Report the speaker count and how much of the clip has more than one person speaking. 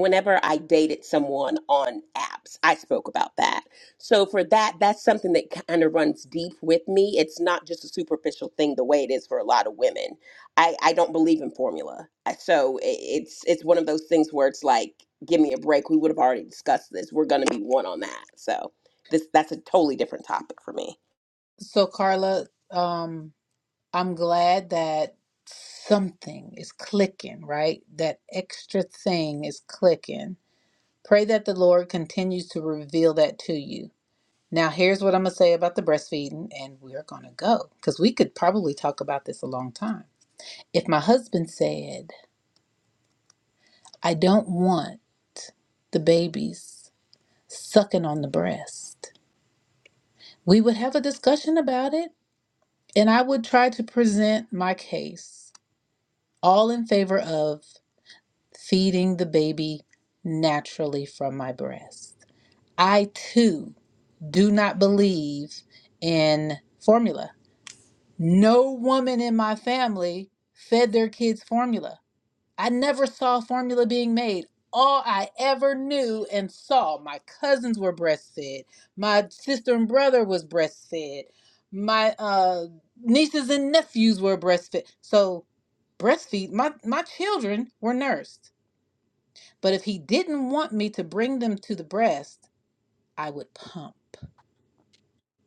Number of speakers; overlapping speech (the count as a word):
two, no overlap